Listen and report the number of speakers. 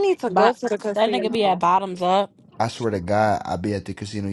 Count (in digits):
3